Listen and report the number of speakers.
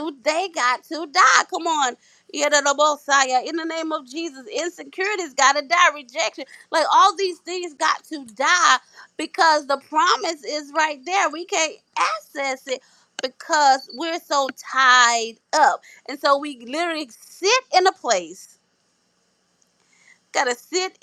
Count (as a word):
one